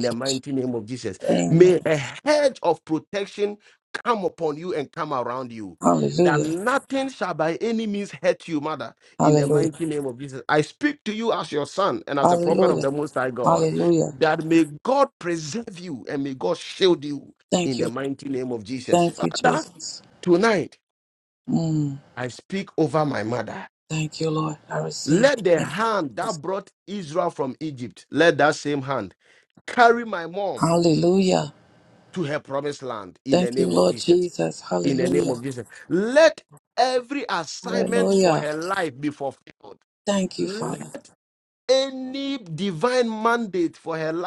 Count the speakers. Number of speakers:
2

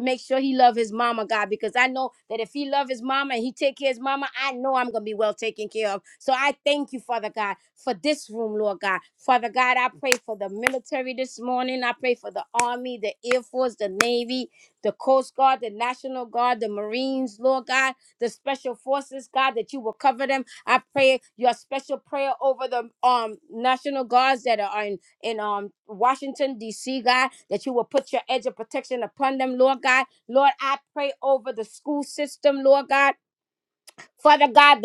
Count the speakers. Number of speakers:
1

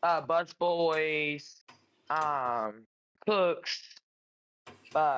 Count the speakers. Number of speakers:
1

